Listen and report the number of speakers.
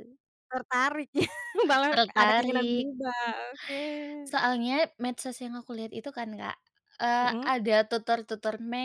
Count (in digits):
2